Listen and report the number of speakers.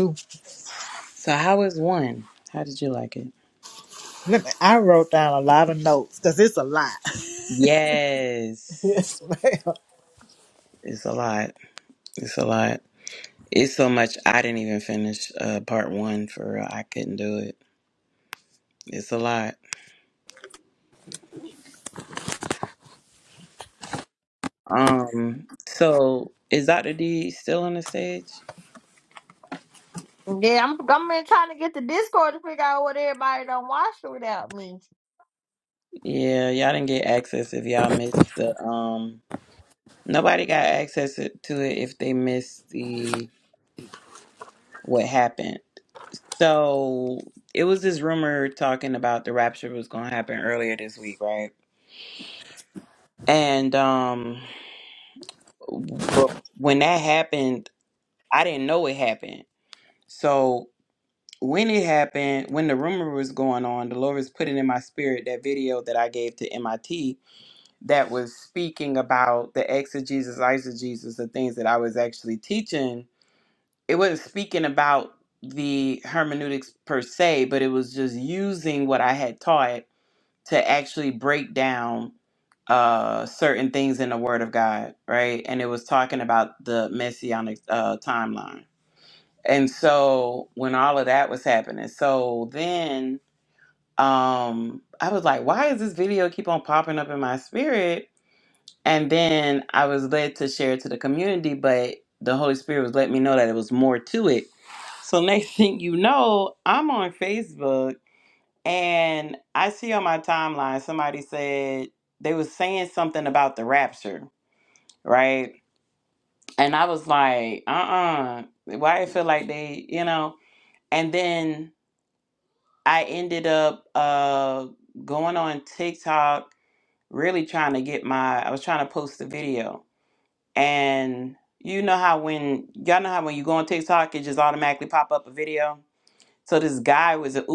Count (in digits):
3